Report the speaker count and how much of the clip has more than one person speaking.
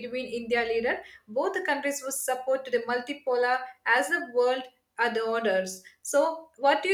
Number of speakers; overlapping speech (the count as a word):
one, no overlap